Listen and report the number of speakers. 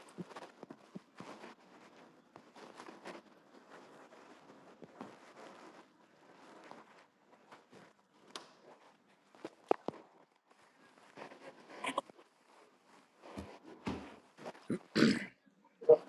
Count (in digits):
0